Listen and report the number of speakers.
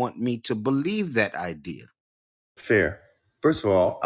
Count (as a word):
two